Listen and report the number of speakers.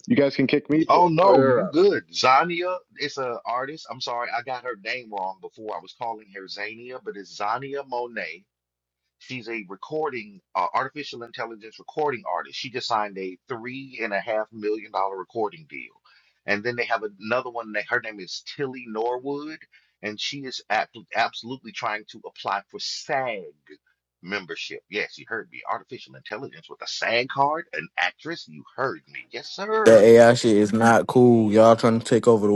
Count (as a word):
three